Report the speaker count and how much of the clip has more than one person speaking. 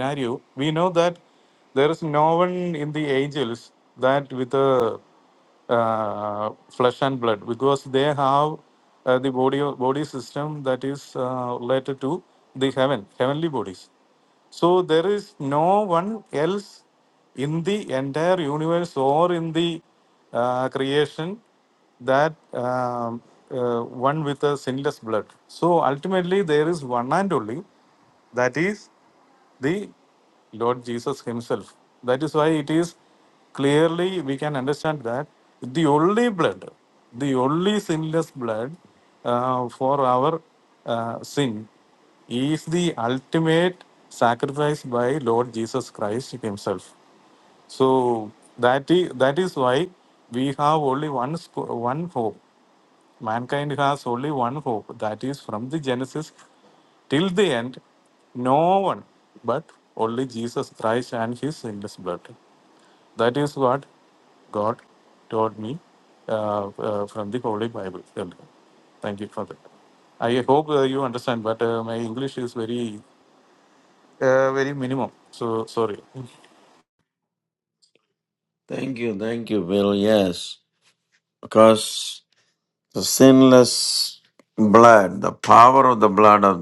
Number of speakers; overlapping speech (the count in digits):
2, no overlap